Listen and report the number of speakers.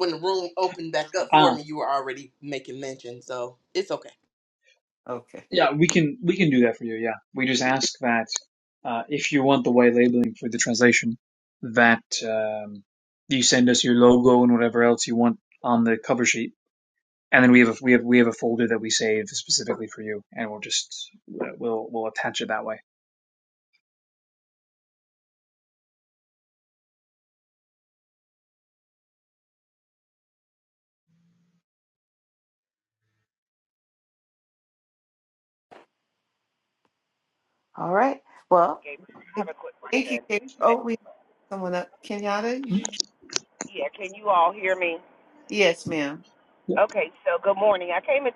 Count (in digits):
4